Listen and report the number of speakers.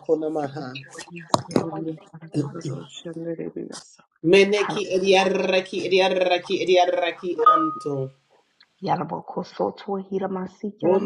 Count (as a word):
three